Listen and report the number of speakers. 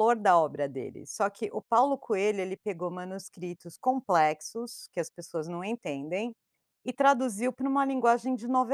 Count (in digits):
1